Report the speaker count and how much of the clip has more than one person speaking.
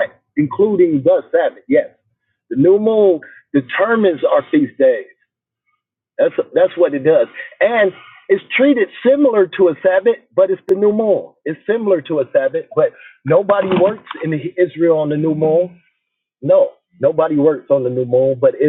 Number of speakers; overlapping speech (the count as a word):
one, no overlap